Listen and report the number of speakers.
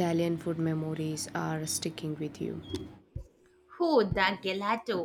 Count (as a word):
two